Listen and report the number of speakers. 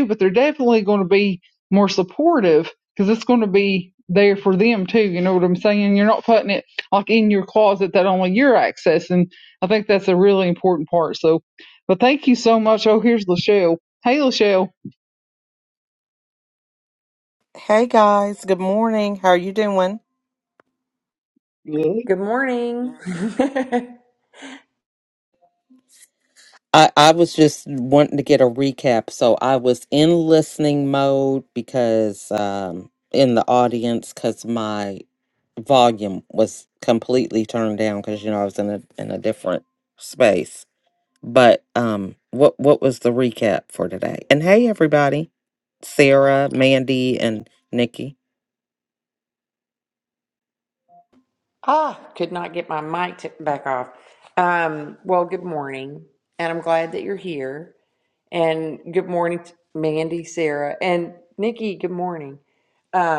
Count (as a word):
three